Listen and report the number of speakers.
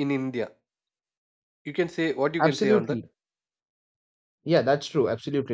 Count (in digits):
2